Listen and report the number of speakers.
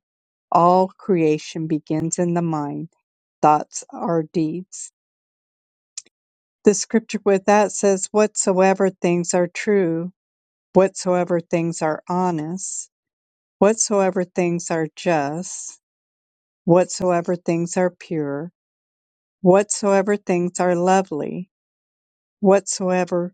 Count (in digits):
1